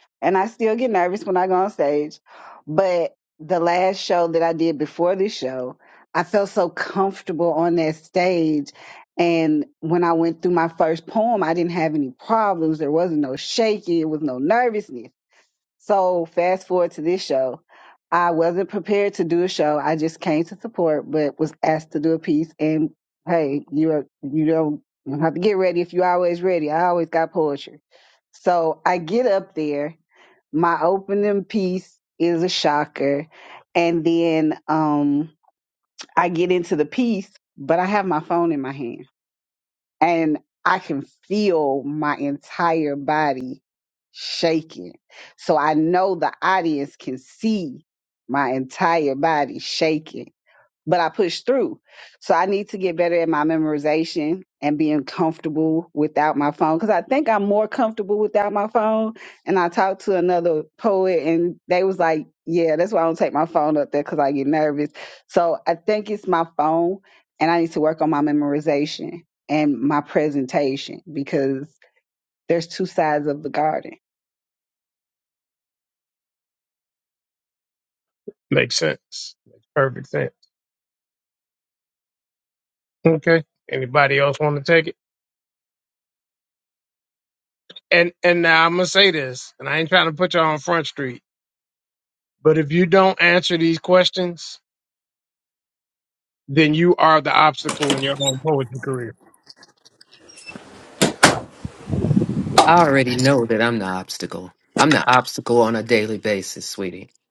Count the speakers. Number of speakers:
3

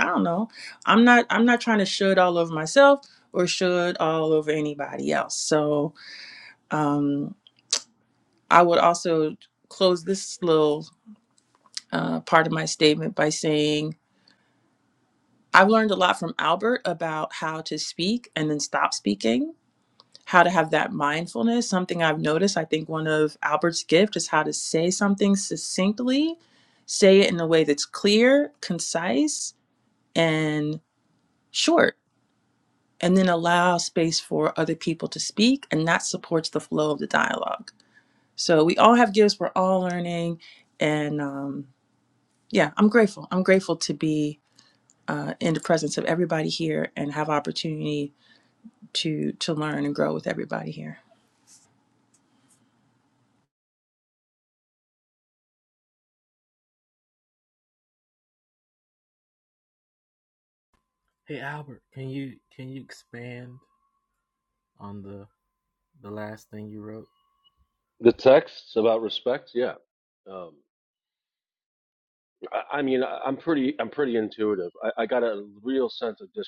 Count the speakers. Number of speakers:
3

